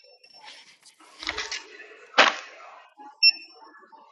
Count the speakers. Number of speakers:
0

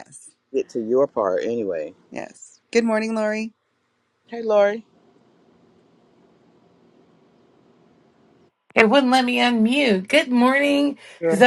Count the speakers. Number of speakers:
3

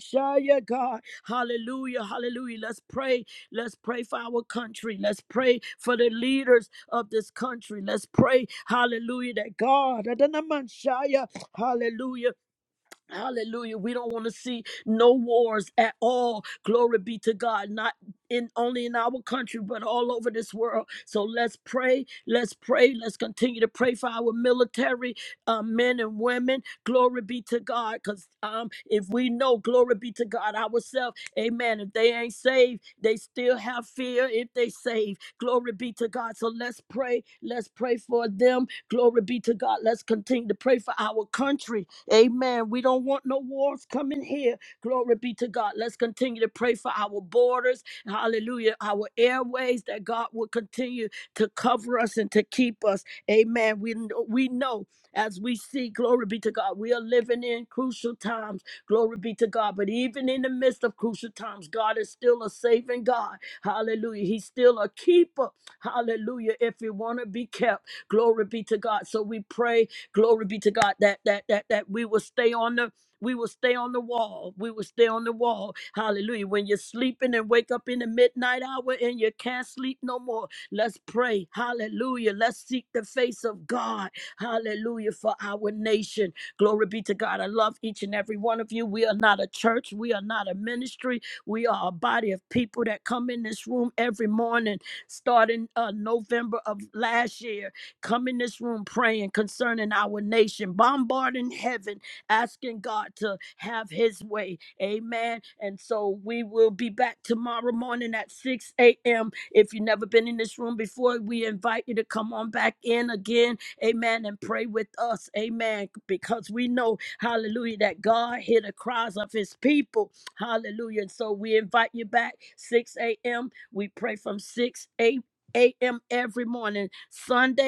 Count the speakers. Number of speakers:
1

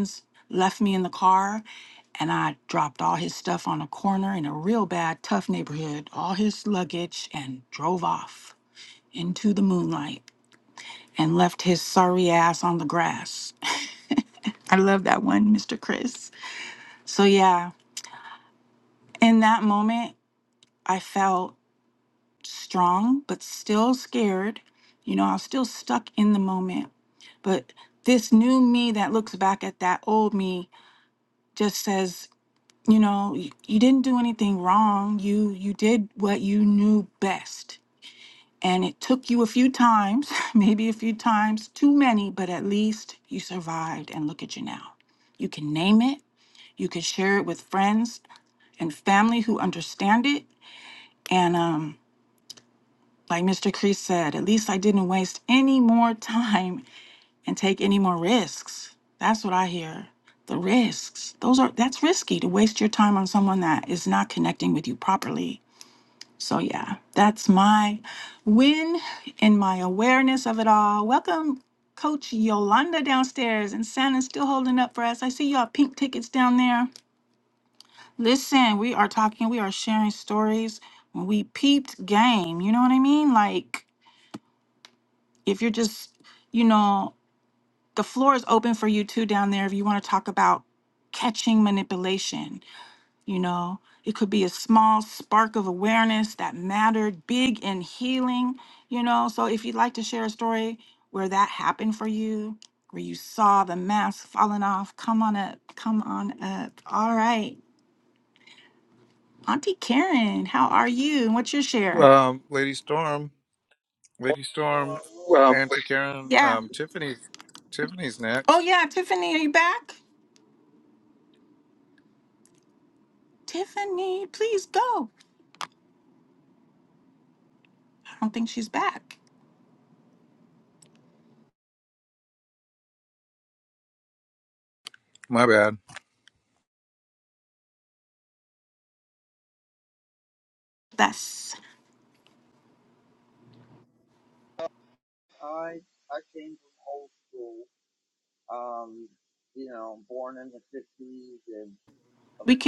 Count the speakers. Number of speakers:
3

